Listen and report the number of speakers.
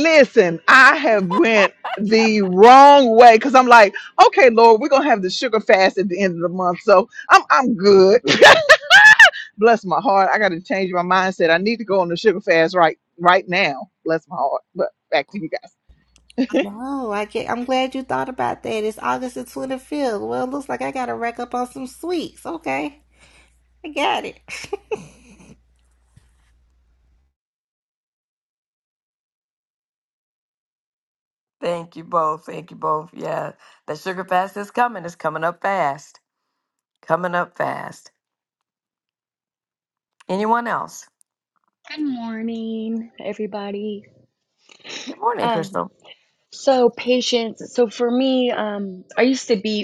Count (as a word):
four